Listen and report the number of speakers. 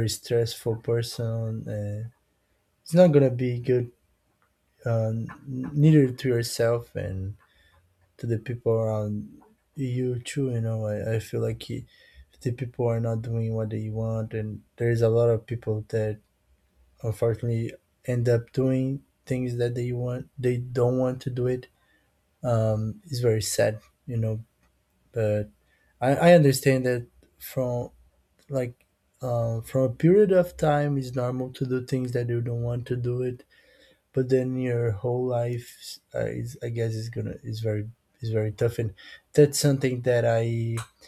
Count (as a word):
one